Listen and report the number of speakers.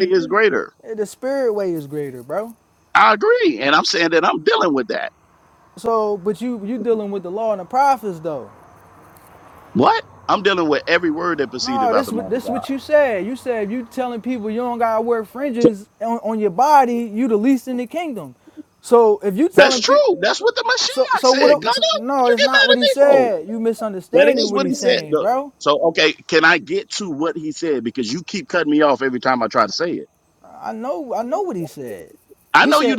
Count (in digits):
2